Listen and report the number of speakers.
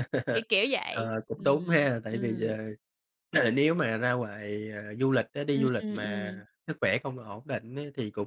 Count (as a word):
two